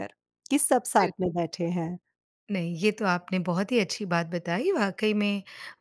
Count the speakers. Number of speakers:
2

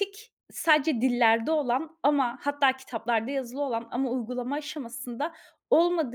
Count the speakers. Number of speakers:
1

